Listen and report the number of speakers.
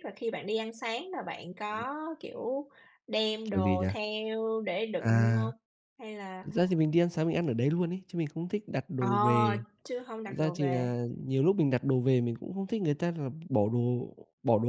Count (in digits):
2